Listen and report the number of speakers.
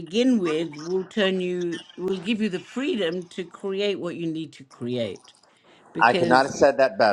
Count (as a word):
two